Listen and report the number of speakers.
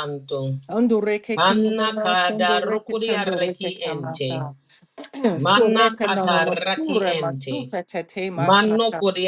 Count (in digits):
2